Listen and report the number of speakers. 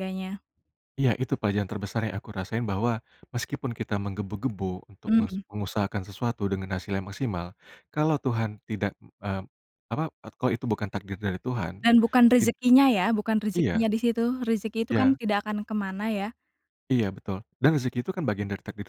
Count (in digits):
2